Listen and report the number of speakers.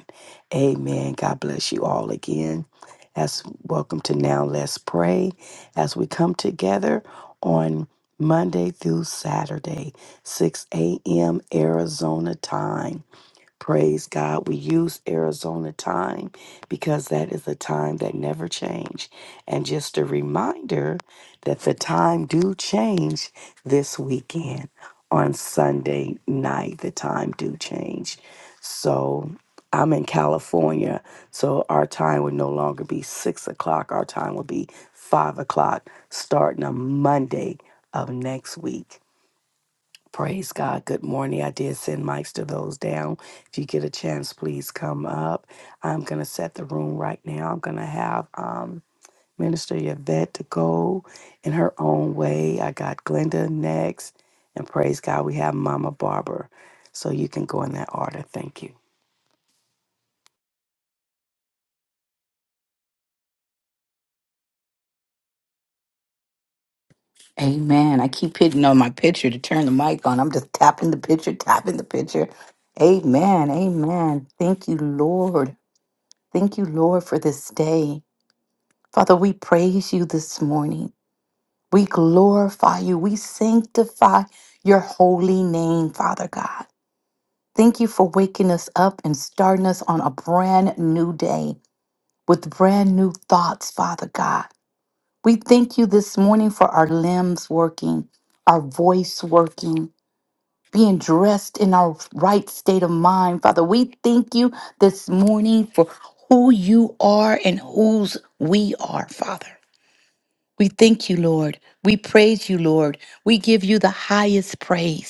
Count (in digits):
2